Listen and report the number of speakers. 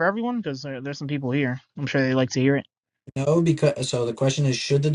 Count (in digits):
2